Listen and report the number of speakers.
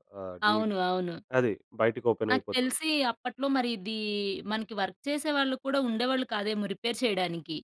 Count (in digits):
2